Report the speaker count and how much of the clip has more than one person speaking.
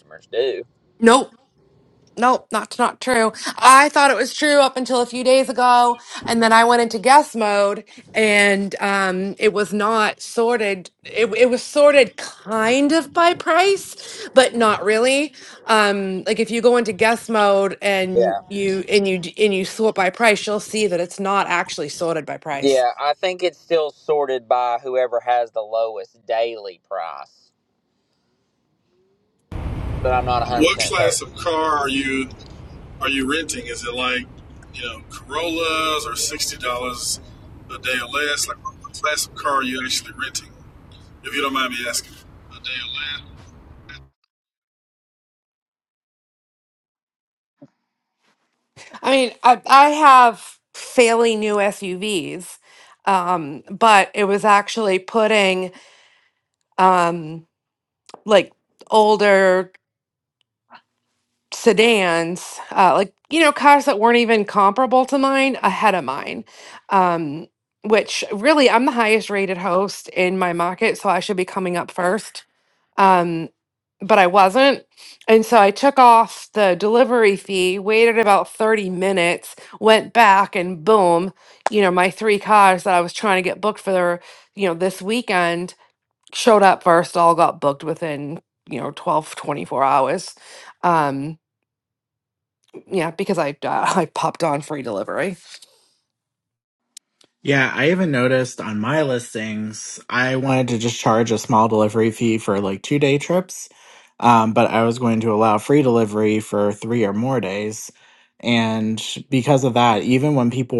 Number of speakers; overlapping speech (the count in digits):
4, about 1%